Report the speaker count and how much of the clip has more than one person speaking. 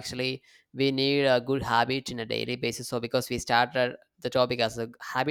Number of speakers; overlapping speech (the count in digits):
1, no overlap